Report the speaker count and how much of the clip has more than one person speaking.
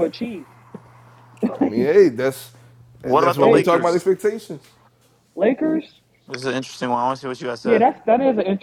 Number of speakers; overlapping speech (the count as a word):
three, about 15%